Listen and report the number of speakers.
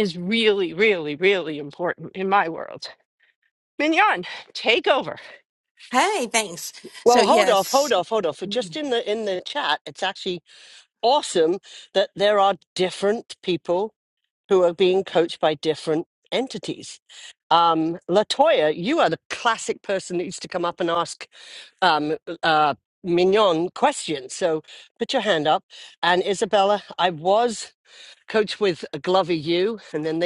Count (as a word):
three